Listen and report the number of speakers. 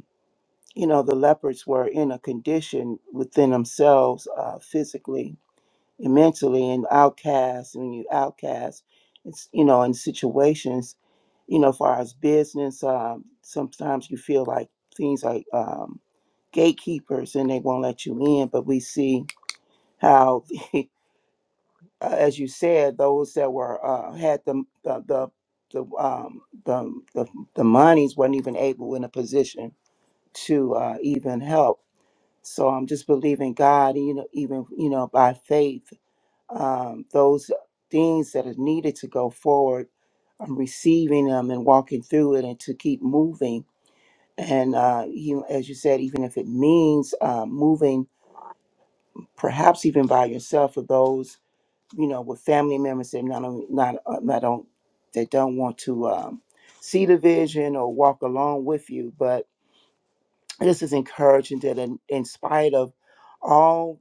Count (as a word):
one